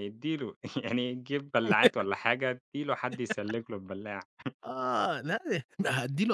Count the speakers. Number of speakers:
two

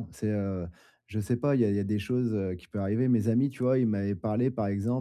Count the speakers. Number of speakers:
one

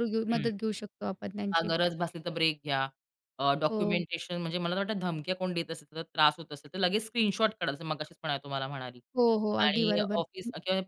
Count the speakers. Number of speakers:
two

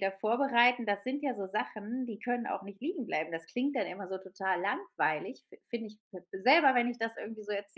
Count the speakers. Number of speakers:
one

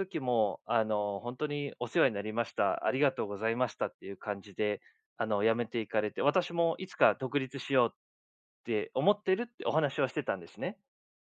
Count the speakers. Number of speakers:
one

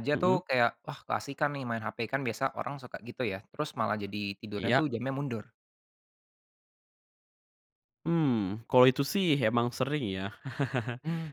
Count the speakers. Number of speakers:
two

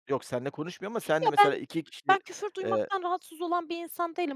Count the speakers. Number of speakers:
two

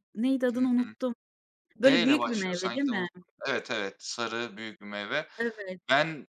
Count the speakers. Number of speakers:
two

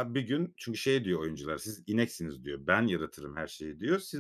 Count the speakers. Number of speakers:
one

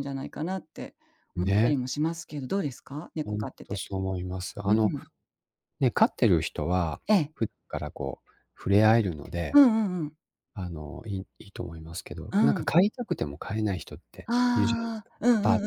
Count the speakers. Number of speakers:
two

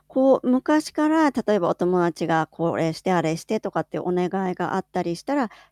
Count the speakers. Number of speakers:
one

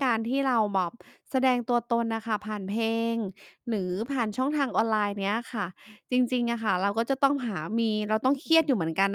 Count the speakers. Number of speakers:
one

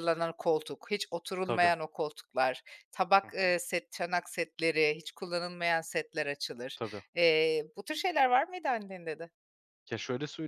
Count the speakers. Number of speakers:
two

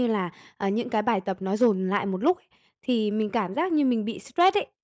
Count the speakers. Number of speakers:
one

